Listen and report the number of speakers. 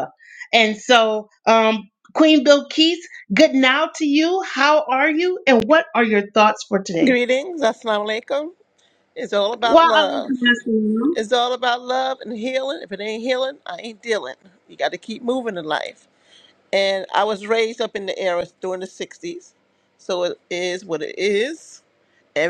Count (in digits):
2